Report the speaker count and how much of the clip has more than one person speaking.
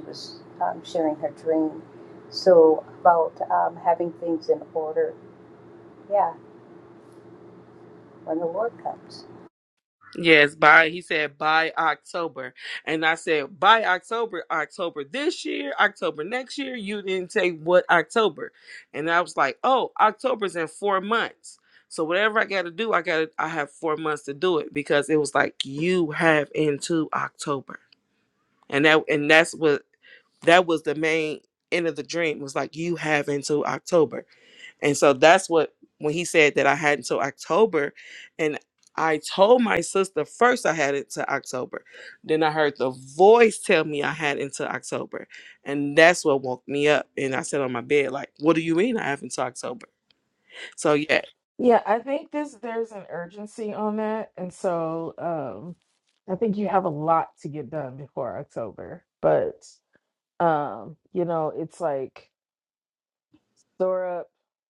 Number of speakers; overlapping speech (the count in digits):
3, no overlap